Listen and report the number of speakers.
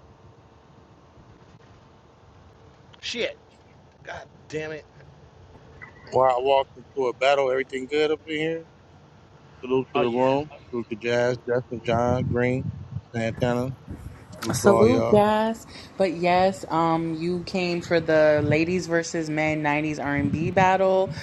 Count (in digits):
3